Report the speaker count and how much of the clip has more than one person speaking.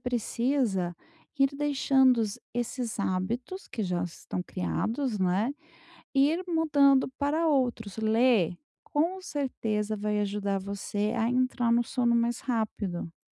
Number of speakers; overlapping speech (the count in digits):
1, no overlap